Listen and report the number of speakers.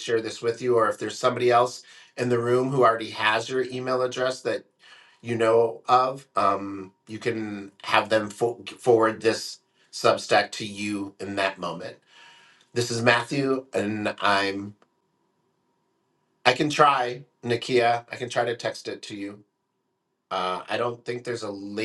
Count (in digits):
1